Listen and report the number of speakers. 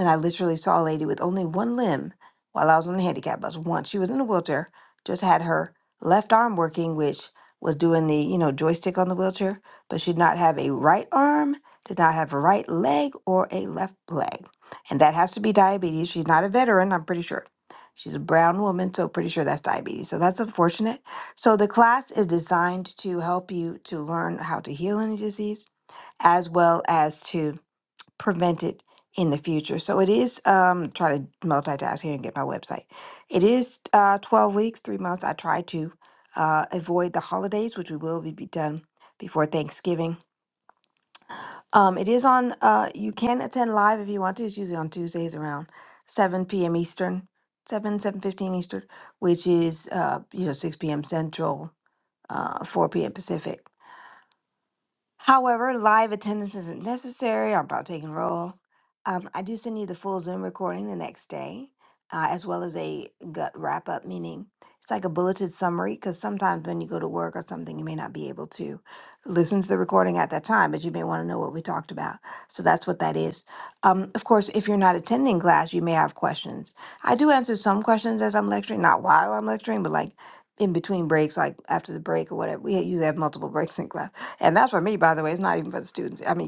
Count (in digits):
1